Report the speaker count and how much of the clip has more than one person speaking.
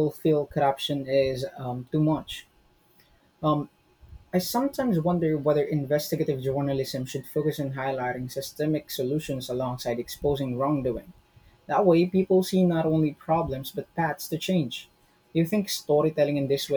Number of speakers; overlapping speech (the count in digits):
1, no overlap